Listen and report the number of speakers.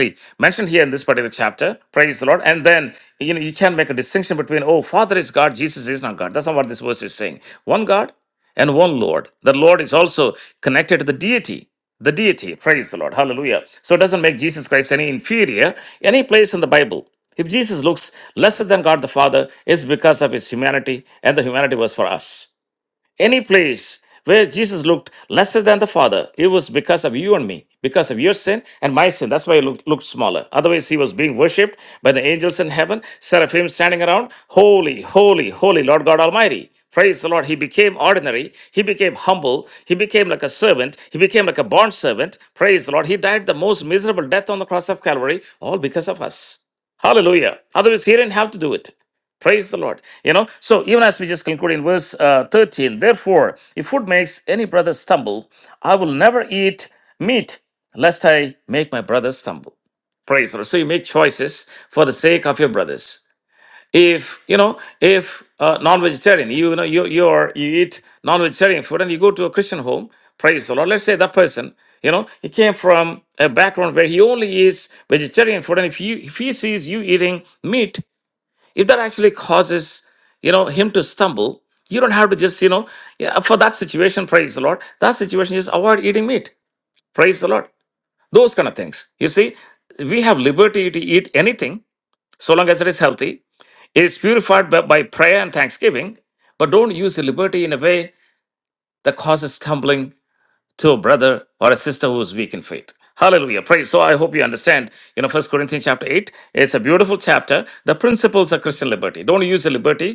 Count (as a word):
one